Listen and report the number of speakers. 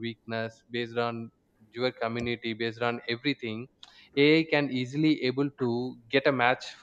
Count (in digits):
1